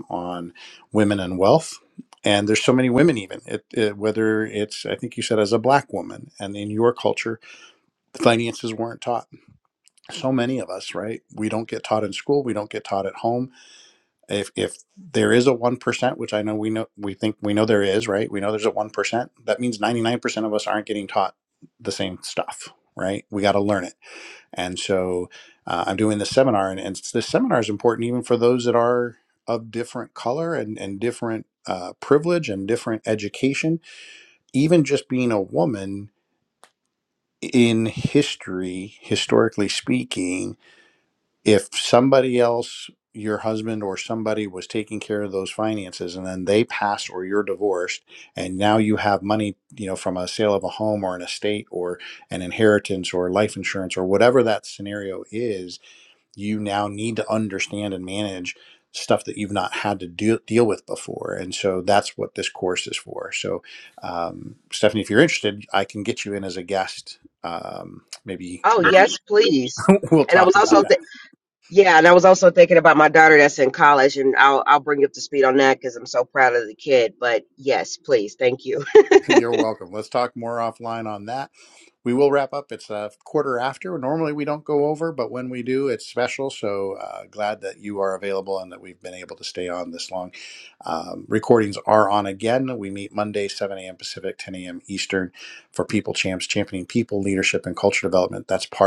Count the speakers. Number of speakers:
2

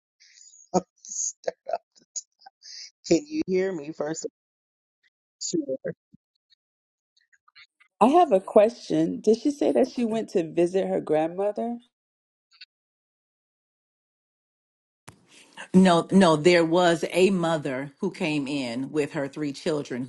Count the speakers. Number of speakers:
3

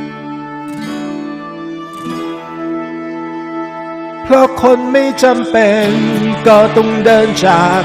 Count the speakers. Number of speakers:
1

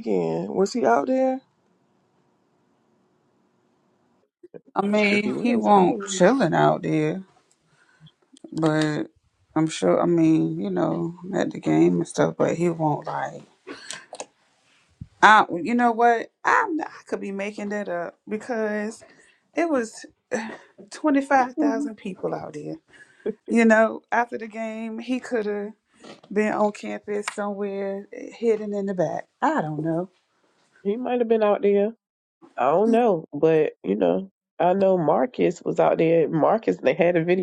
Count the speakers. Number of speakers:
3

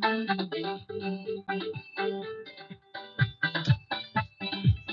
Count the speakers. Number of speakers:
0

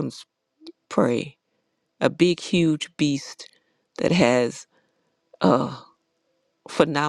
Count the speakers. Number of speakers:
1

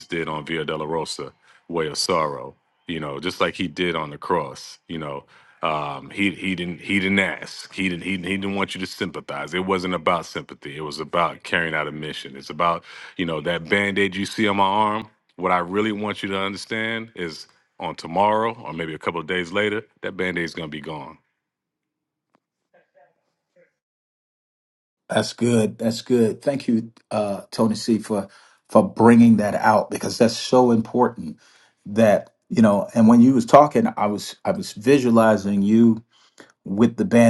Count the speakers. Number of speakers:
2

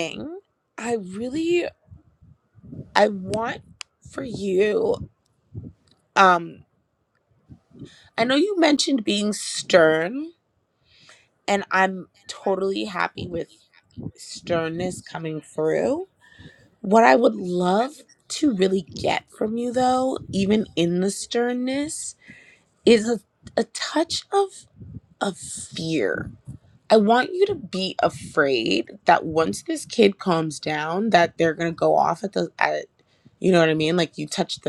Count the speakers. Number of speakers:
1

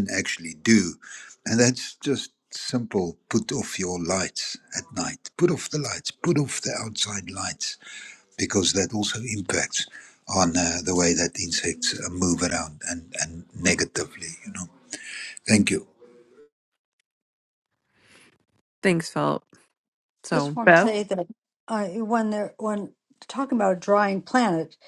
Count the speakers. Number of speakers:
3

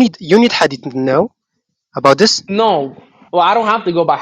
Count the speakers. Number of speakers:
2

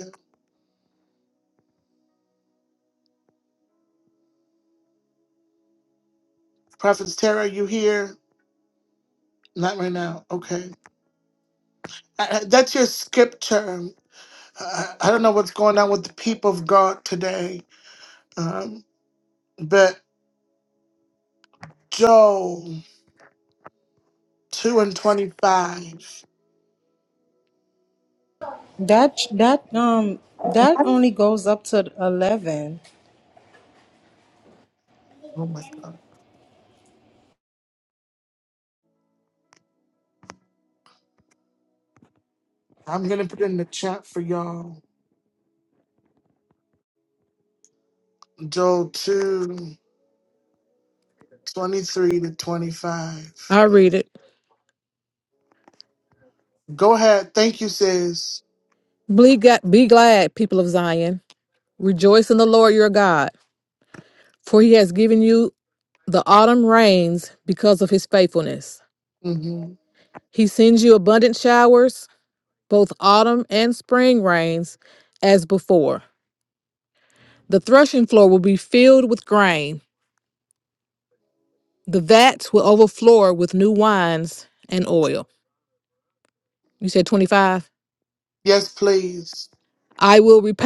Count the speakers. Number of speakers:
3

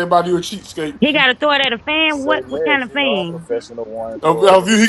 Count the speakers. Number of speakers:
3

